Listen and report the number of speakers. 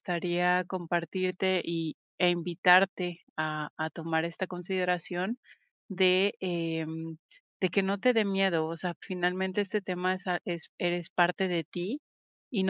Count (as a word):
one